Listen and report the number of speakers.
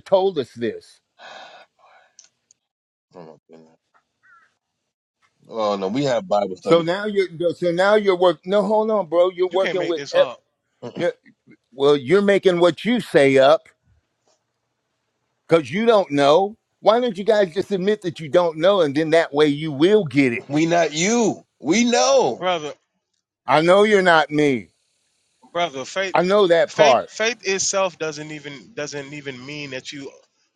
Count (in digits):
3